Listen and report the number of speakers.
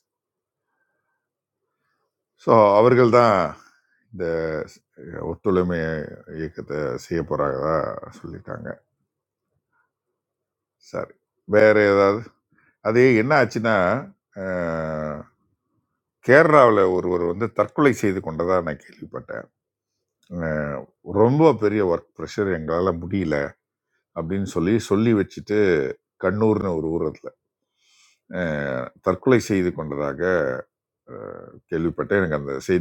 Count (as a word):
one